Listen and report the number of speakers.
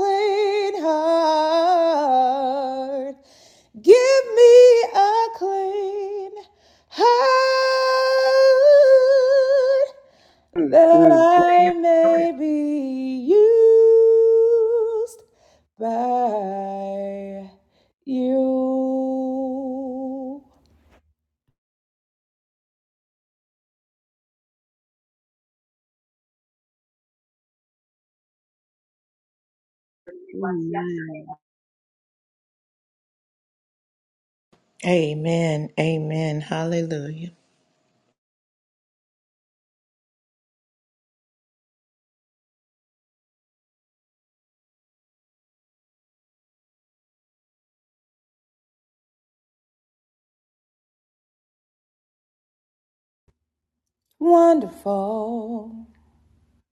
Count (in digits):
3